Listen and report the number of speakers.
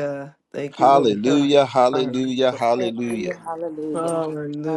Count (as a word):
three